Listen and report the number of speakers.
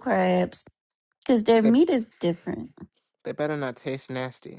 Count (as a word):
two